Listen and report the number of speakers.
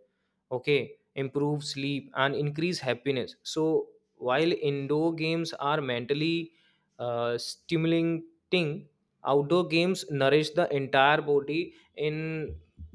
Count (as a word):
one